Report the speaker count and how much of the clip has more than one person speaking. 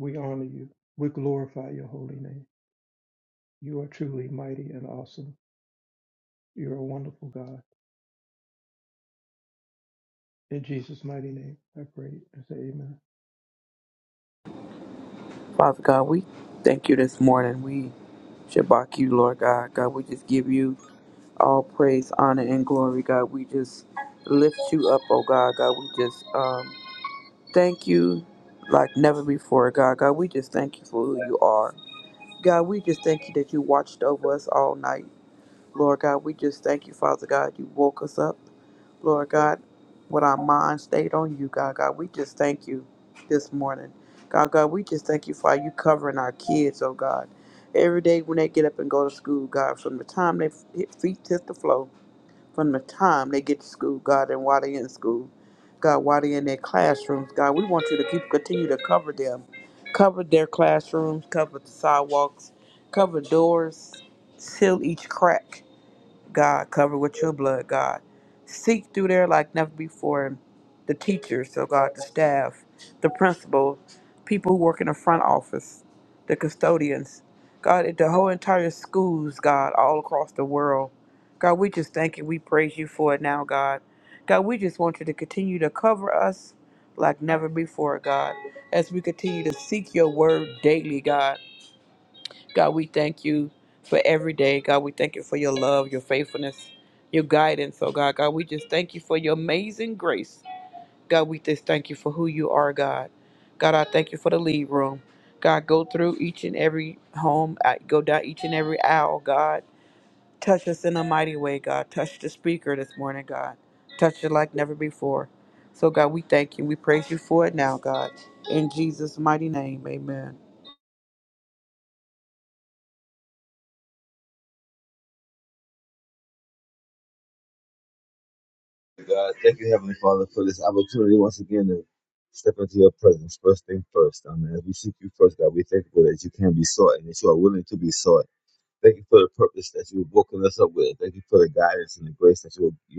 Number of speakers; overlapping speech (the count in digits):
3, no overlap